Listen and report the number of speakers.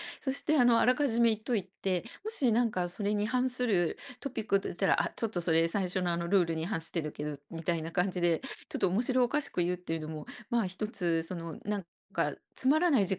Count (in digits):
1